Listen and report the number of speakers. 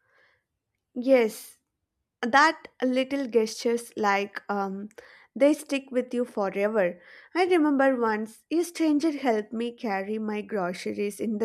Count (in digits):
1